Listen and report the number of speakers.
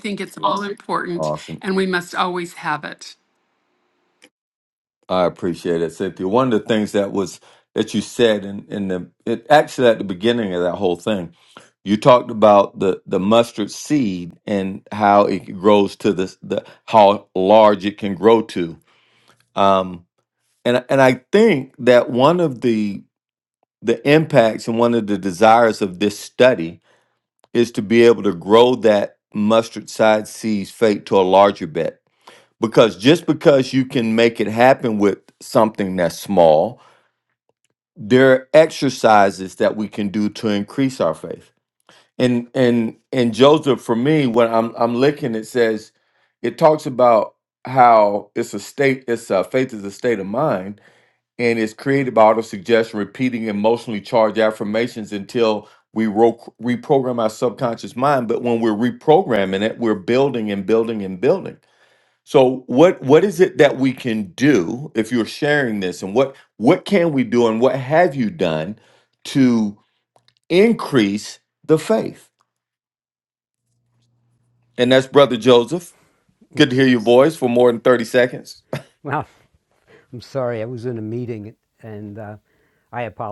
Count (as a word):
three